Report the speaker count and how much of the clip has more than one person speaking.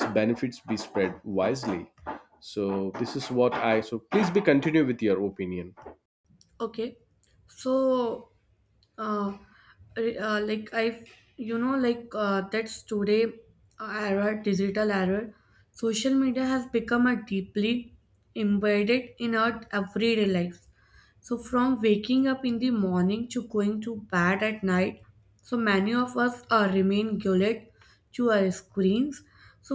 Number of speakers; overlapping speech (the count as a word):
two, no overlap